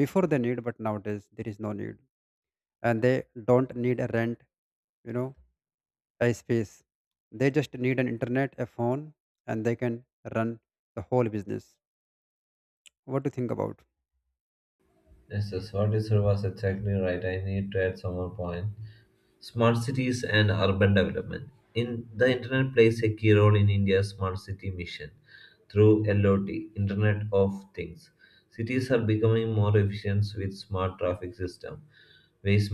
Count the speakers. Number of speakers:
2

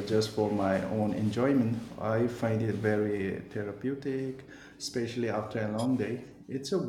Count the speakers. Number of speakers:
1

